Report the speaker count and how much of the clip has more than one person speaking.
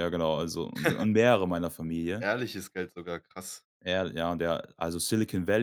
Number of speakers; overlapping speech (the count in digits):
2, about 1%